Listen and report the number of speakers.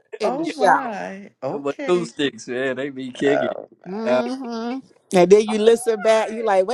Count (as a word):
three